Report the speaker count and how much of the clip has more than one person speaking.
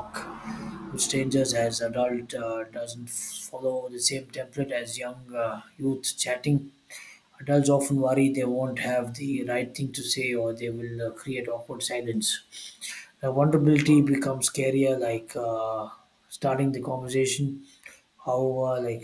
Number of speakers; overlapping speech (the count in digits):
1, no overlap